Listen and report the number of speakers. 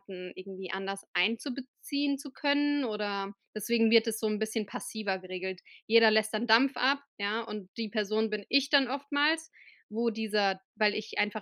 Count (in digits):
1